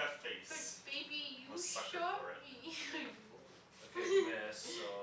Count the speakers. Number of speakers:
3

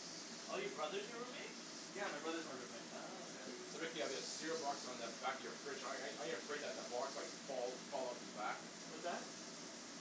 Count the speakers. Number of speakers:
3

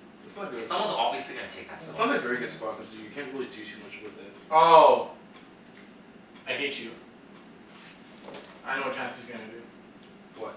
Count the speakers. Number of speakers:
3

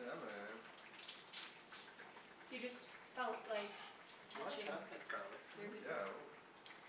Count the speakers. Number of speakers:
3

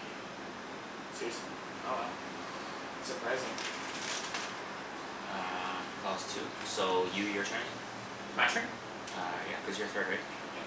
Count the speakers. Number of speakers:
2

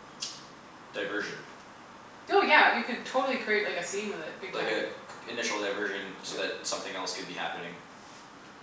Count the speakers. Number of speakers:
2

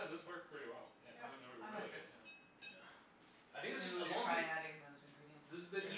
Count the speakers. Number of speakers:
3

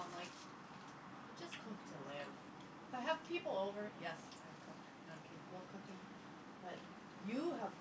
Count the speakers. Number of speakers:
1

